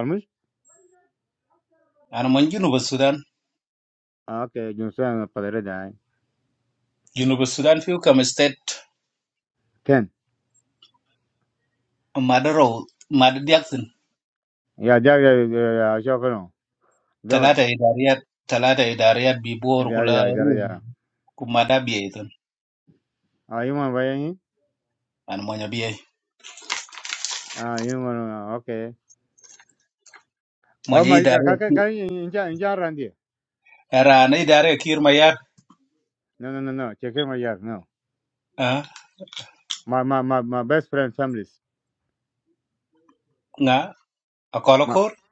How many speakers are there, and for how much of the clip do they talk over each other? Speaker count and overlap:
two, about 4%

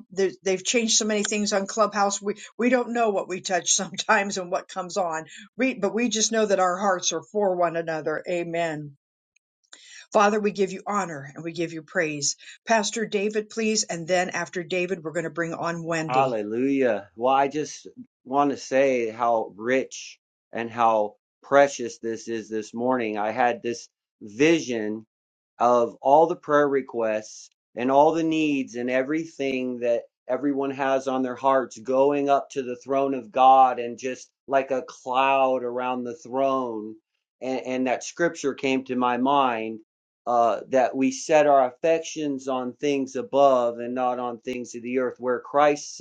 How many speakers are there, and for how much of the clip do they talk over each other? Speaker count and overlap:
two, under 1%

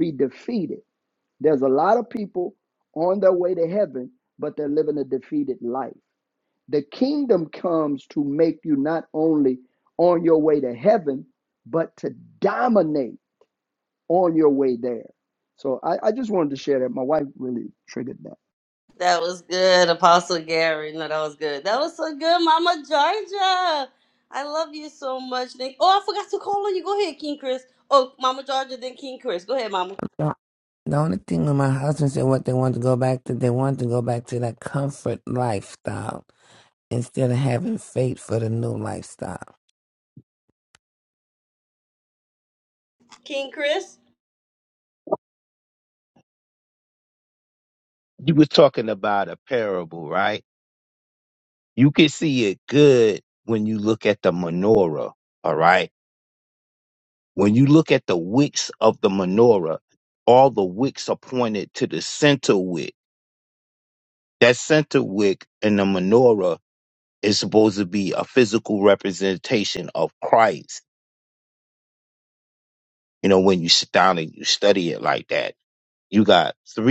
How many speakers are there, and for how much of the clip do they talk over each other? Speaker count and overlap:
four, no overlap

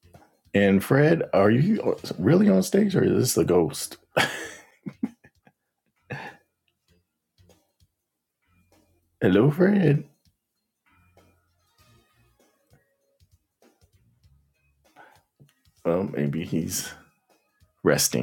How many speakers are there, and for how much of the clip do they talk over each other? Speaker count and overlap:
one, no overlap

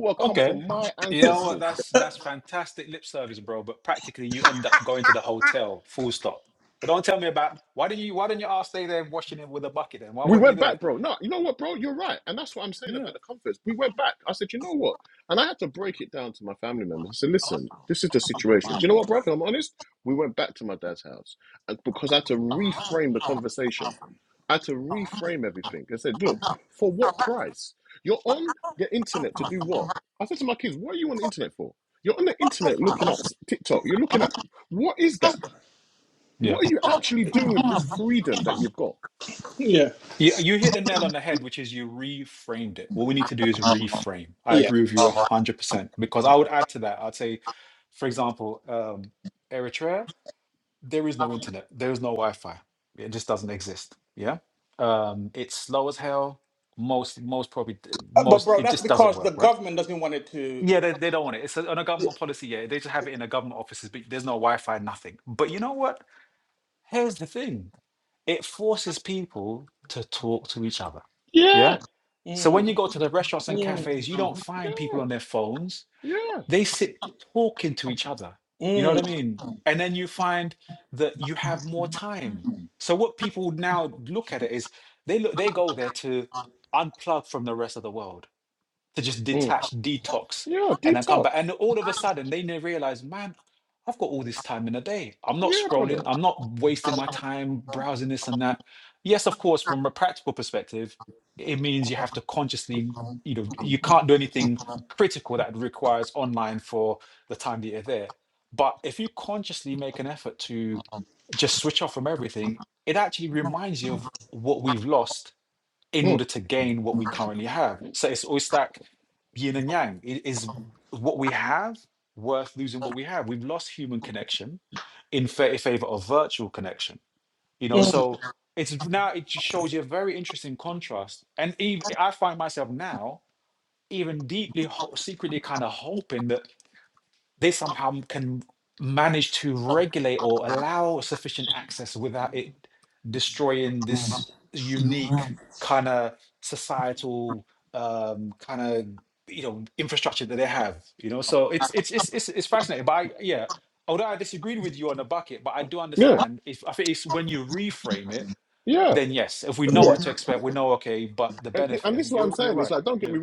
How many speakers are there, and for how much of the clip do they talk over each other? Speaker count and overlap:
three, about 6%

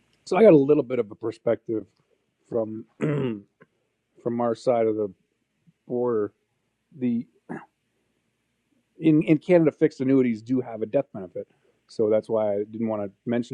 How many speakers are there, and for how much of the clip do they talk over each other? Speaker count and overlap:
one, no overlap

